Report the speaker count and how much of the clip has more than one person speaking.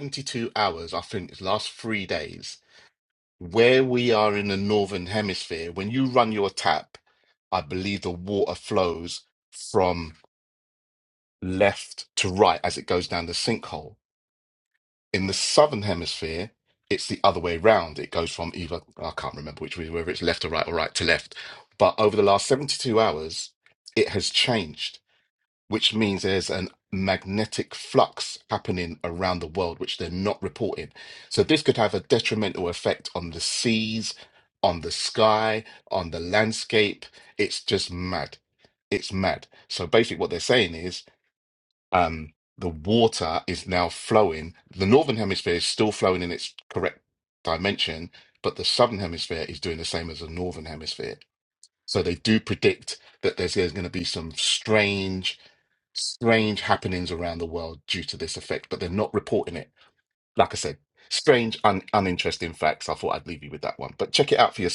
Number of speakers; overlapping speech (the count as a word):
one, no overlap